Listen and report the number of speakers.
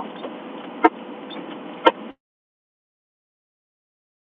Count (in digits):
0